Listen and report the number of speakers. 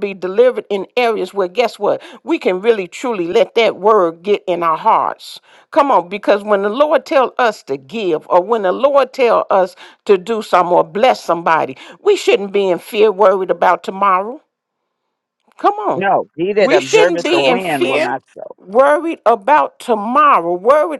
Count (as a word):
two